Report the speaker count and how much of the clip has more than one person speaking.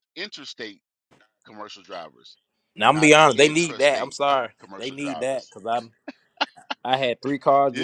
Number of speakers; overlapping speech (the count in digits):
2, about 28%